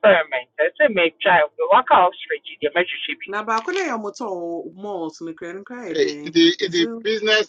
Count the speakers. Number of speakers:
three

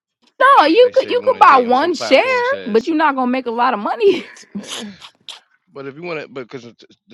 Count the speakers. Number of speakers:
two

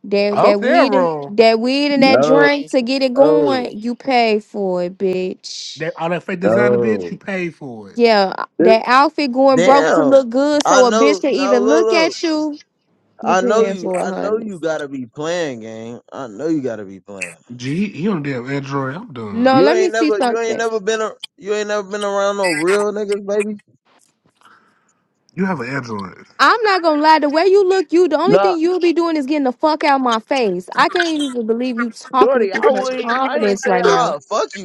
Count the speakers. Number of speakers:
three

